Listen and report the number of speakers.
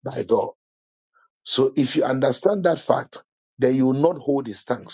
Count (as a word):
one